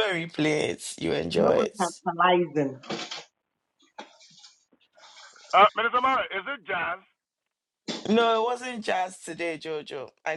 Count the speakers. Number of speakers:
three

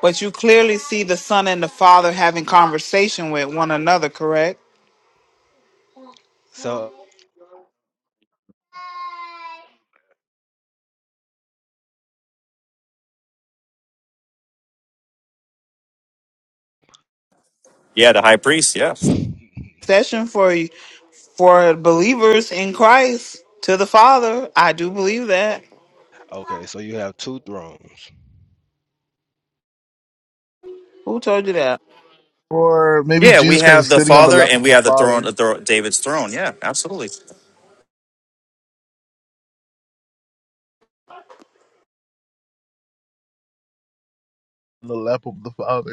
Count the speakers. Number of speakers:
four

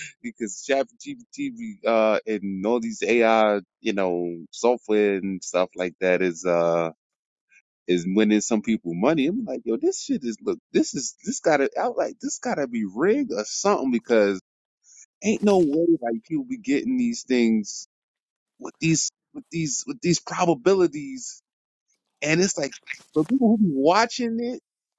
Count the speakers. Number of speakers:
one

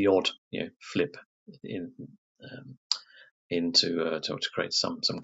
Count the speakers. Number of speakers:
one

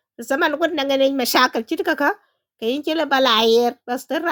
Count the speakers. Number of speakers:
one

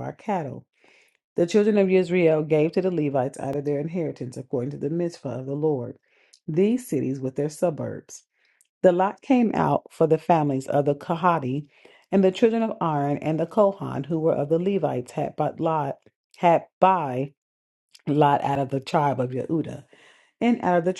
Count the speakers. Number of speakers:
one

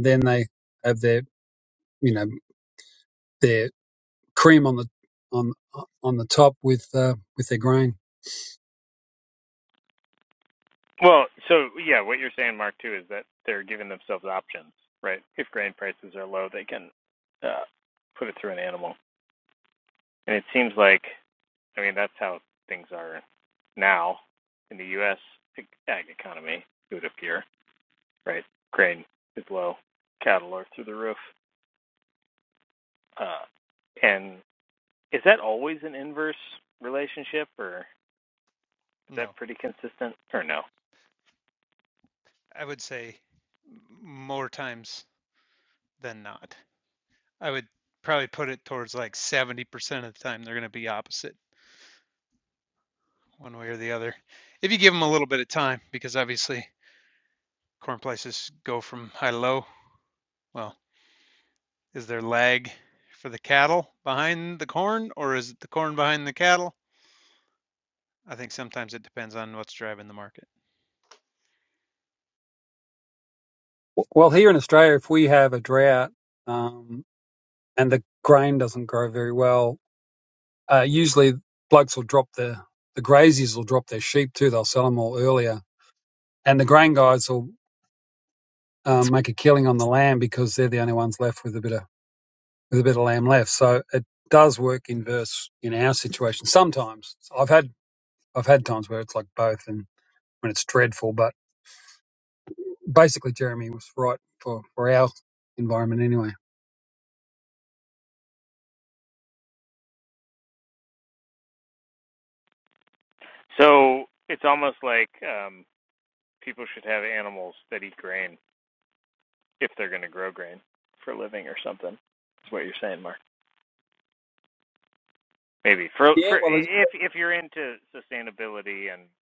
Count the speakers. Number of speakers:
three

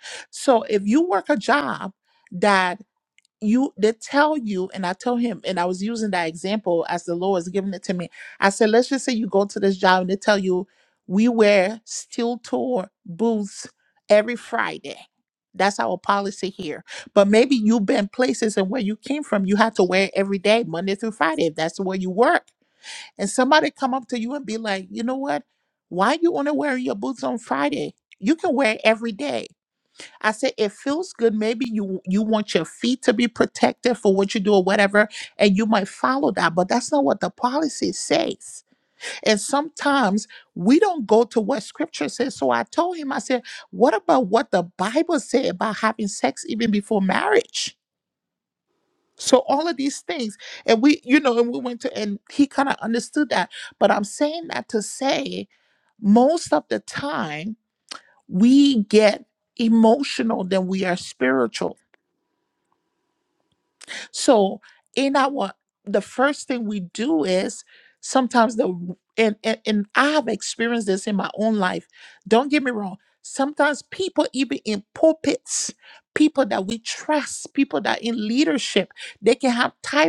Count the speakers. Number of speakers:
one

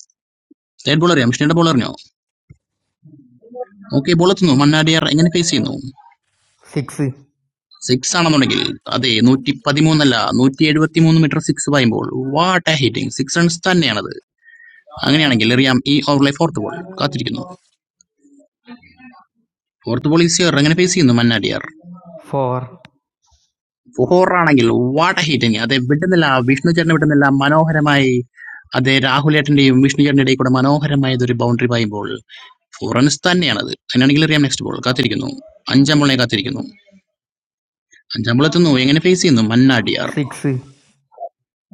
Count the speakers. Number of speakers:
two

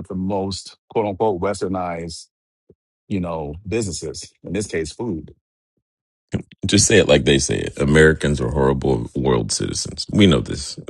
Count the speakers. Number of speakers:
two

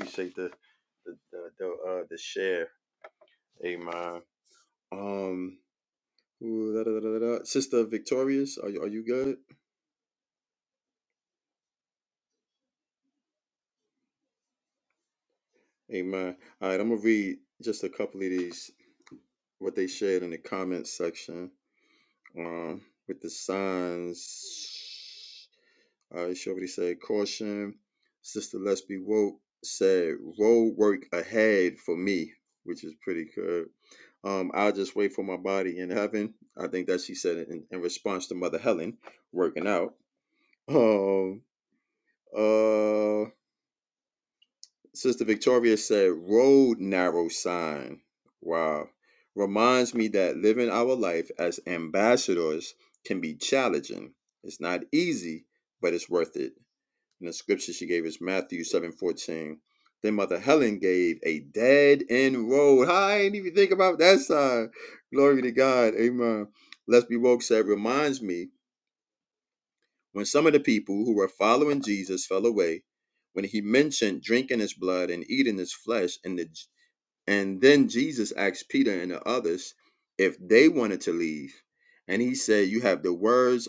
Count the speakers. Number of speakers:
one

